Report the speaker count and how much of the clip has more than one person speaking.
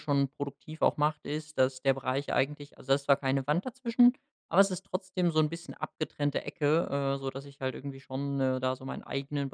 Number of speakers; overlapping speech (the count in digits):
1, no overlap